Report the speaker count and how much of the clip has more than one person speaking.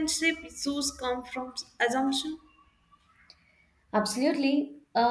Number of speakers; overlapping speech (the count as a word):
two, no overlap